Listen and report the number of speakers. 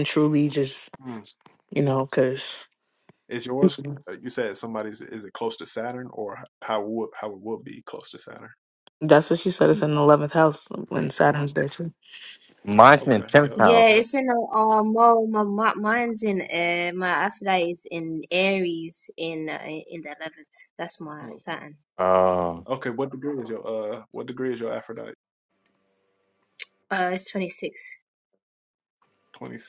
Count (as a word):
four